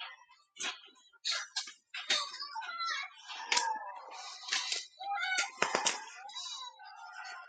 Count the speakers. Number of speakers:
0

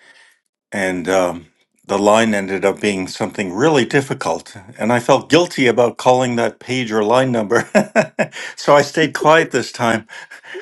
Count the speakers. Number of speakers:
1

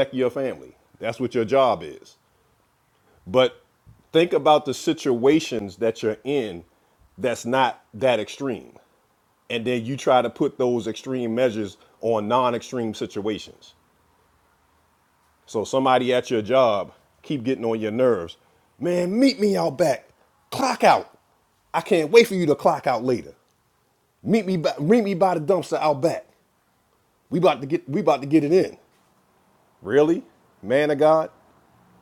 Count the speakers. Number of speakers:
1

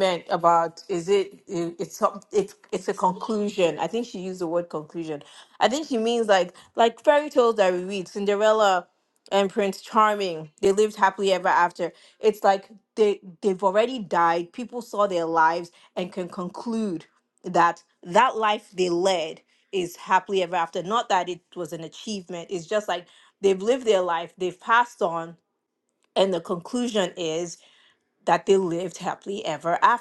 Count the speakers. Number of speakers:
1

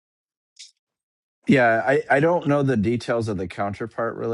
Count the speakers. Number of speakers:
1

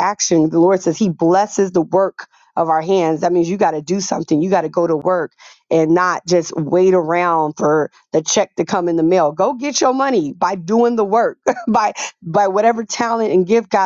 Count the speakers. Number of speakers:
1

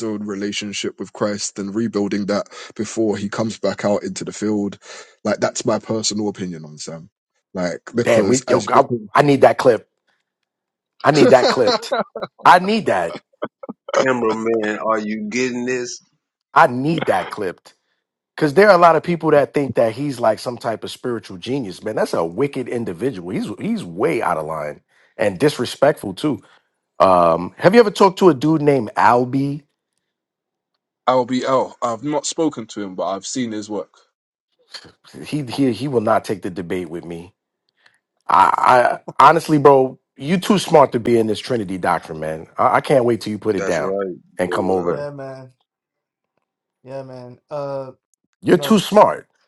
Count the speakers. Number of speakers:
4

